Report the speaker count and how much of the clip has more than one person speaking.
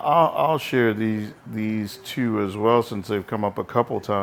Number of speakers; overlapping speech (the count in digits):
1, no overlap